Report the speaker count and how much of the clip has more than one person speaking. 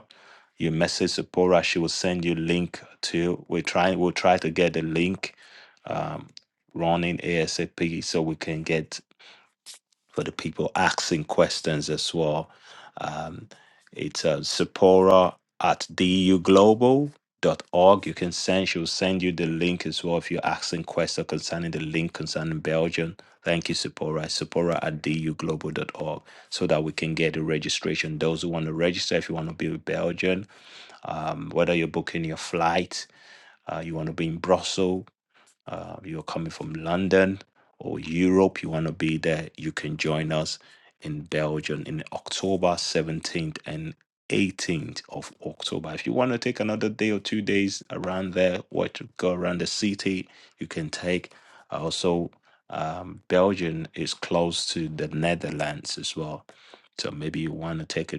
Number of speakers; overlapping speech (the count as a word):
one, no overlap